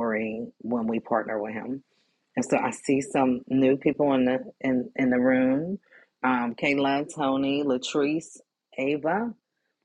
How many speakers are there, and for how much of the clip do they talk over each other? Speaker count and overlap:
1, no overlap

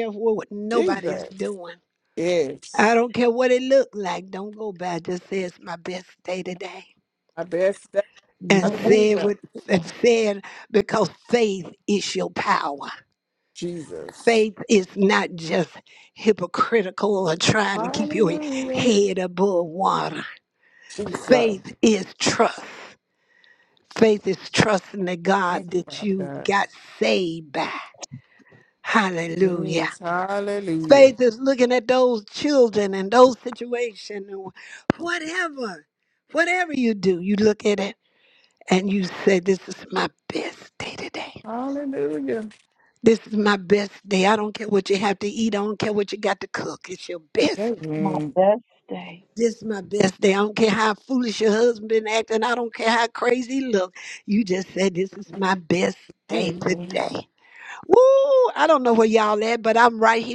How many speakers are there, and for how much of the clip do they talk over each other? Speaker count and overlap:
3, about 9%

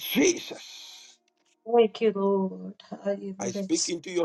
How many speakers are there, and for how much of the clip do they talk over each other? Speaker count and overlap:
2, about 7%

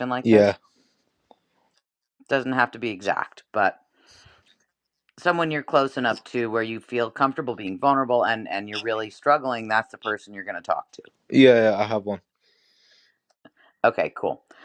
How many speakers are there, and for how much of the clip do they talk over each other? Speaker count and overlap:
2, about 1%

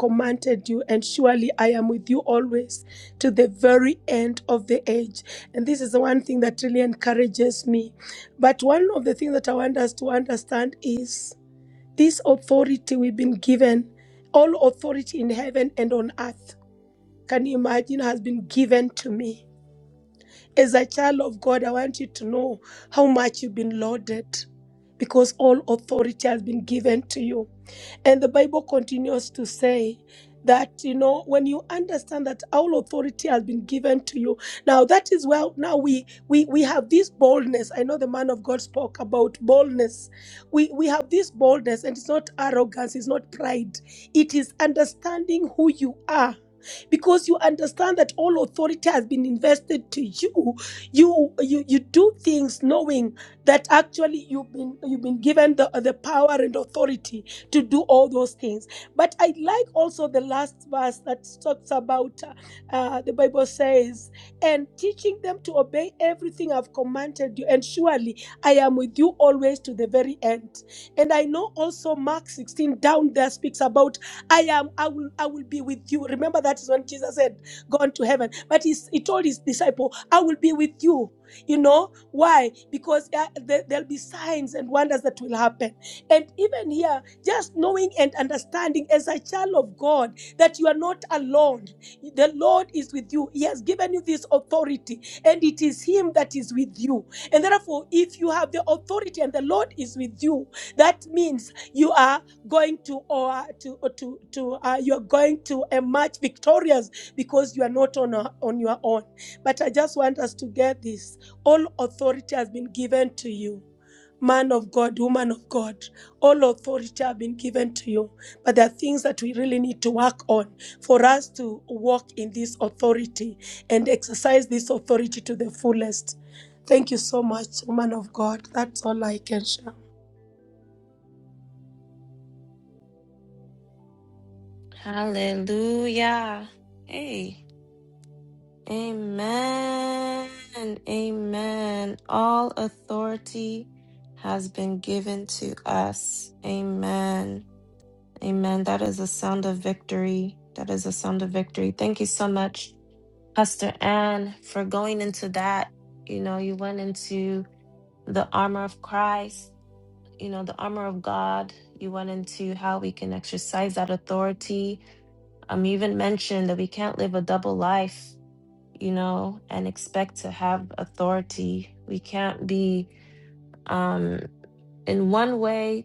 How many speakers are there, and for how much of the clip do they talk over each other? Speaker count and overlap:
2, no overlap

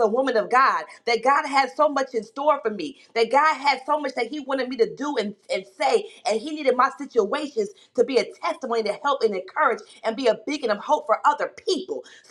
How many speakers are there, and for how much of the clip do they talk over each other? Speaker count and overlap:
1, no overlap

